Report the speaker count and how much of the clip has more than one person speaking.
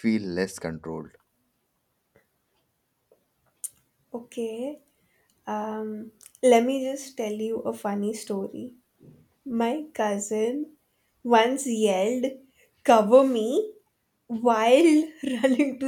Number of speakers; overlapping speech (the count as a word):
two, no overlap